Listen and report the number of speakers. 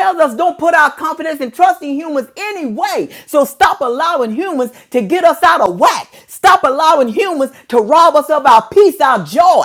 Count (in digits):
1